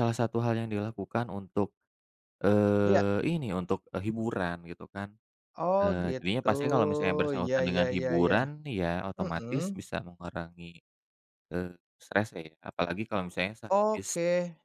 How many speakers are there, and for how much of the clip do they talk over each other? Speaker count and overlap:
two, about 20%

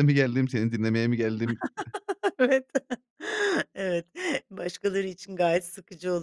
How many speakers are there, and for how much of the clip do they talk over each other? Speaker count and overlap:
two, no overlap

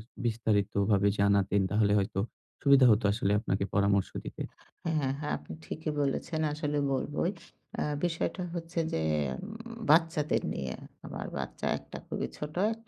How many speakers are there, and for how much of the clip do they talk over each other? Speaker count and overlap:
two, no overlap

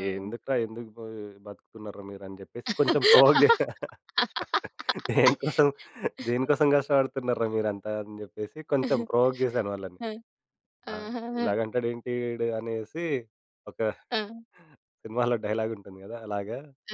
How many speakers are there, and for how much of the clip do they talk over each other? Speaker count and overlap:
two, about 4%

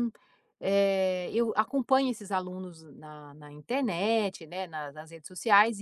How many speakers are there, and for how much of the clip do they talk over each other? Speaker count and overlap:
one, no overlap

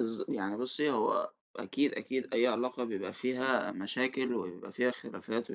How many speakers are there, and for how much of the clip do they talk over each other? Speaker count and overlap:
one, no overlap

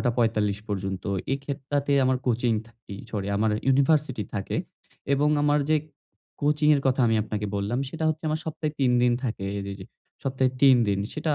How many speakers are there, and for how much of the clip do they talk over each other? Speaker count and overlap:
one, no overlap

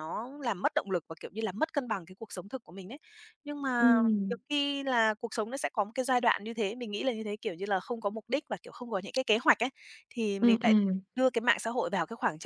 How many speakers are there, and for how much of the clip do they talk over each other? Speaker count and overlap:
two, about 4%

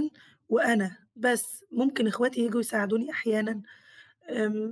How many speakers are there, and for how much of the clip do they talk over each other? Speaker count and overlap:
one, no overlap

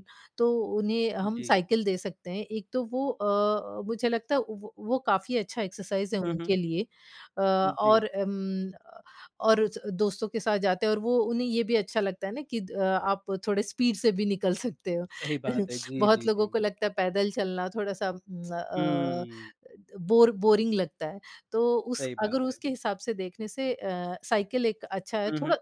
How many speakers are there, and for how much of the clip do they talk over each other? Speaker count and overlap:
two, about 11%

